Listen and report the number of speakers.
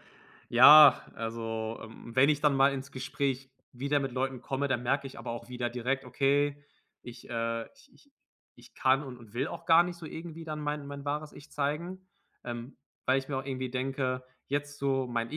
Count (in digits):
1